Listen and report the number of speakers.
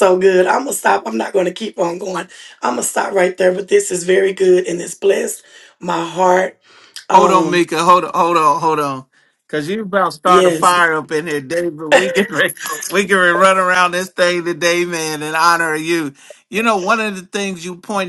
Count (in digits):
2